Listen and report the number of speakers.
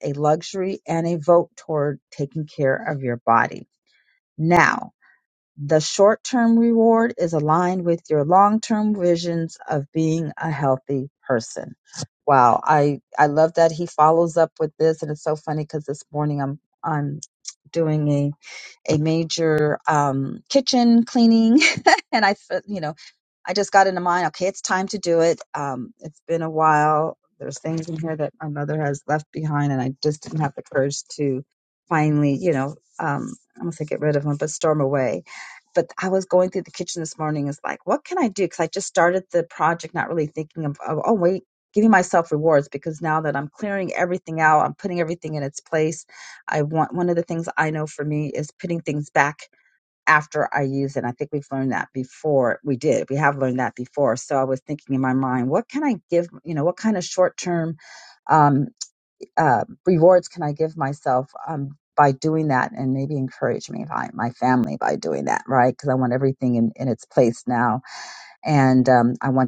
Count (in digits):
1